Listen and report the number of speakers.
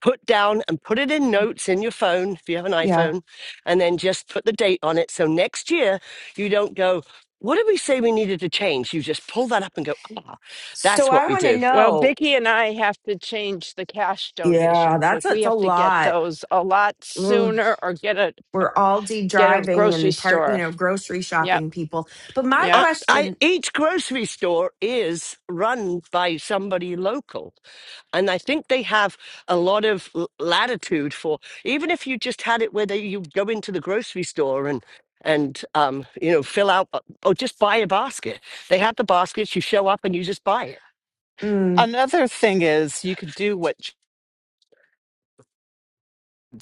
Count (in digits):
4